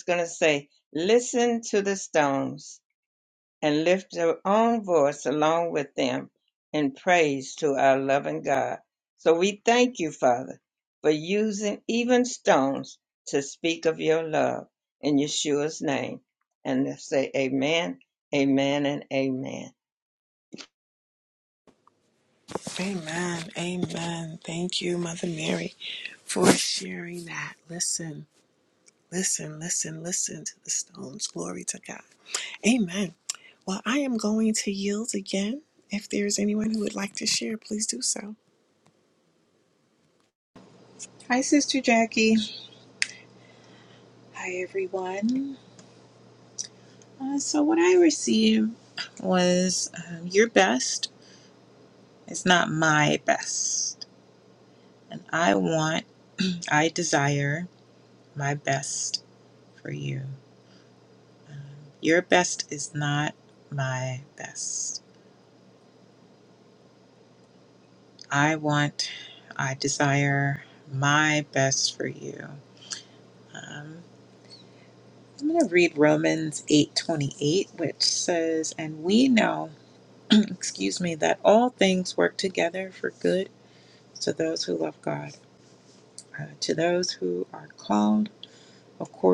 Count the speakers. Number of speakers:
three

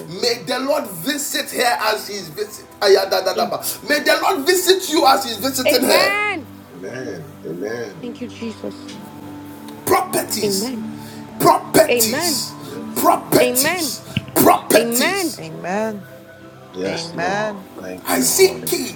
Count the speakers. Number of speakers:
four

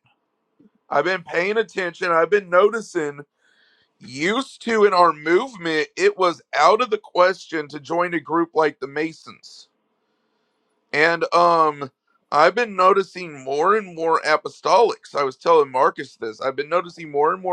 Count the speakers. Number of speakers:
one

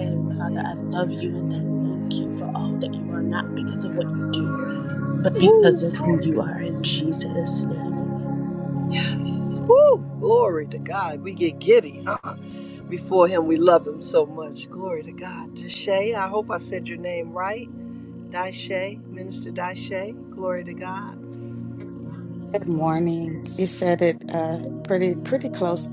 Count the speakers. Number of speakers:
three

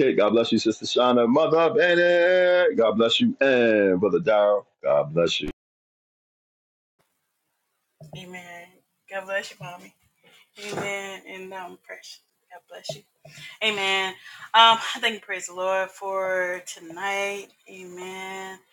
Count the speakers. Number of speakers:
two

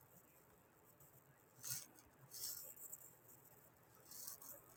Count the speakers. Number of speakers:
zero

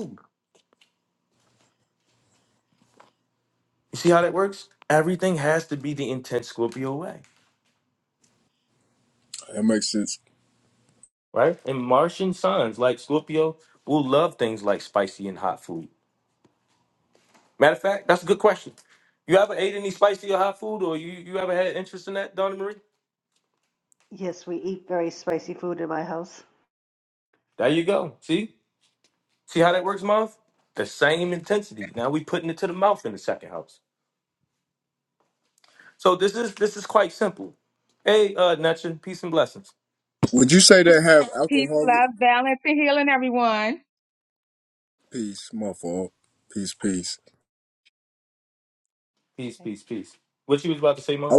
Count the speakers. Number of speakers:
four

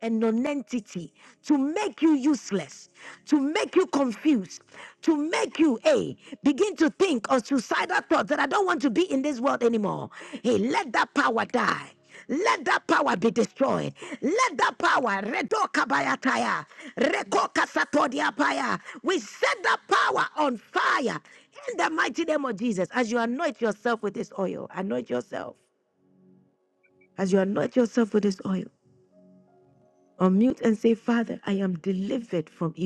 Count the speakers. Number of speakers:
one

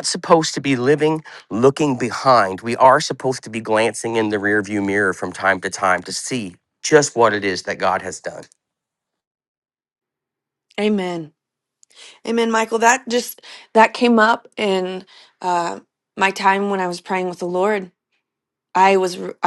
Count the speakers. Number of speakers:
two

